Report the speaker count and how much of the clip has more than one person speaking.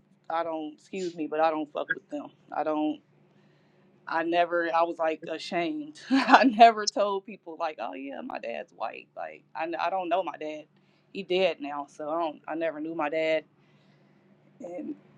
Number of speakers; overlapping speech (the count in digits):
1, no overlap